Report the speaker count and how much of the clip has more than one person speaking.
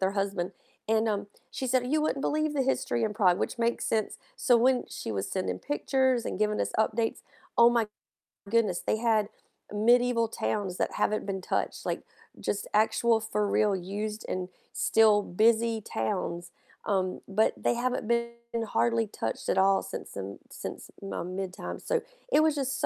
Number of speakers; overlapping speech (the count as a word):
one, no overlap